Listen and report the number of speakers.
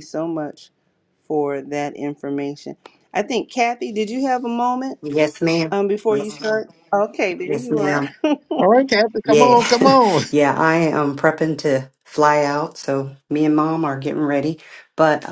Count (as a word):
three